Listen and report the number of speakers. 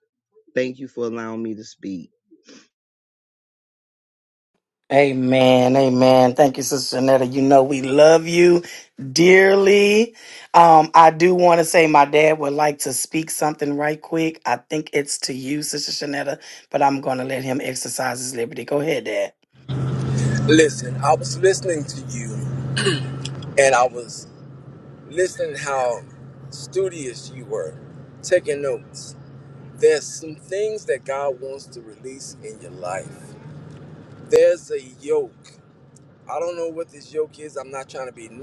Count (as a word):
three